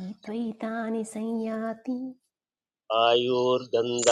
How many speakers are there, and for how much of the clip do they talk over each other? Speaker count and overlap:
2, no overlap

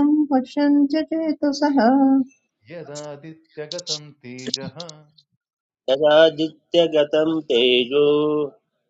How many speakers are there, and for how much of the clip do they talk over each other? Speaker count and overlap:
3, no overlap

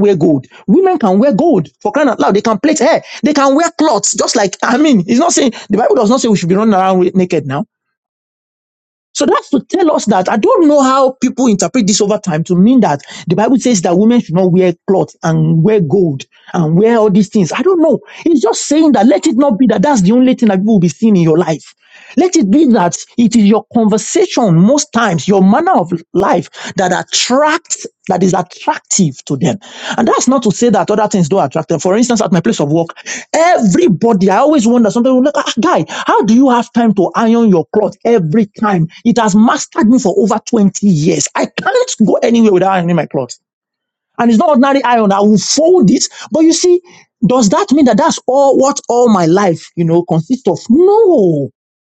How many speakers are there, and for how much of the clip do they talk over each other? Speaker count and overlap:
1, no overlap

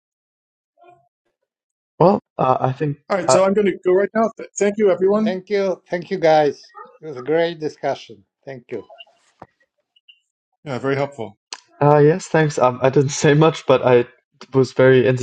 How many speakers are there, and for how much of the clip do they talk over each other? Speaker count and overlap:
3, about 2%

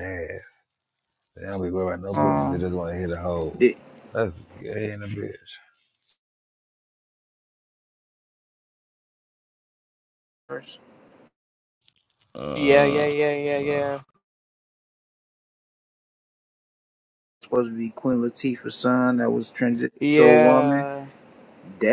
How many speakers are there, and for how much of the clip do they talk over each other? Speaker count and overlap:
3, about 11%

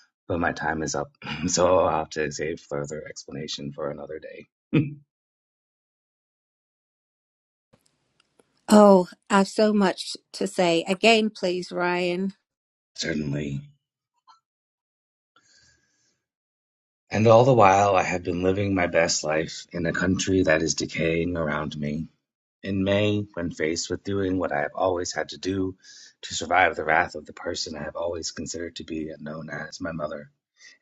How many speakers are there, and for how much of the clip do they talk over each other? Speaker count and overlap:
2, no overlap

